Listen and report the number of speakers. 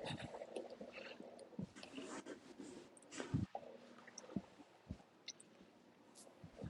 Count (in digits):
0